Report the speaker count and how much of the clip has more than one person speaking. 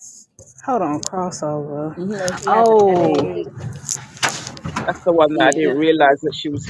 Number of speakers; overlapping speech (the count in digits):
3, about 18%